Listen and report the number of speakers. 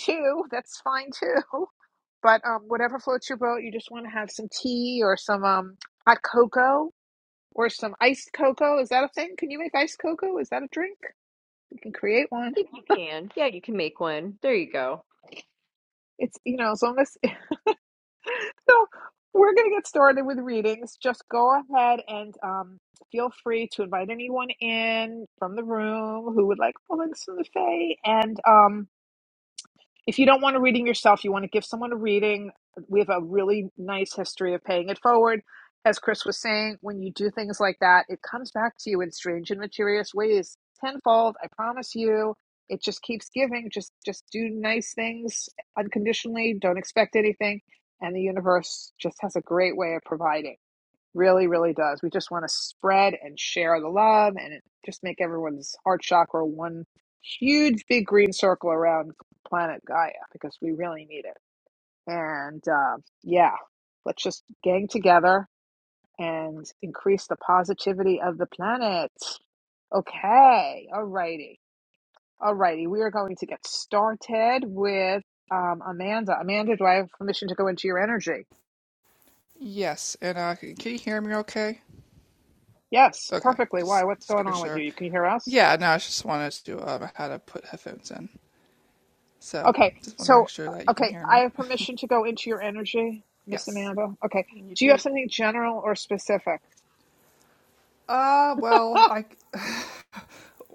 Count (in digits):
3